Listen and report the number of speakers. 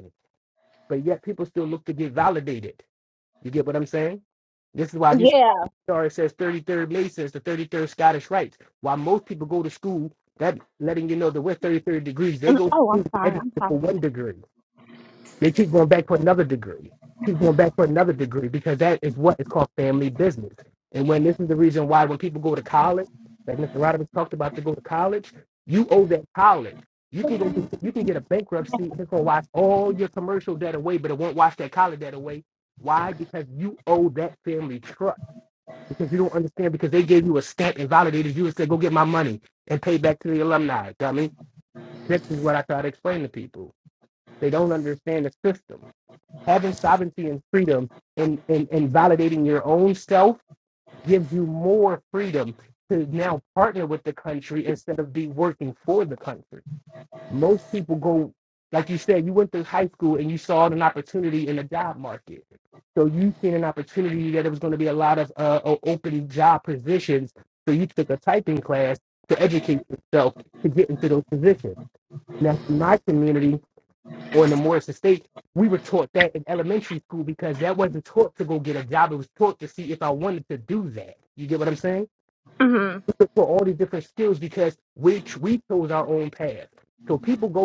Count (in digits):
2